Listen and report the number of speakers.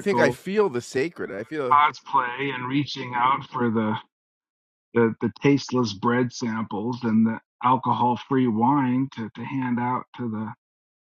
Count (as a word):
two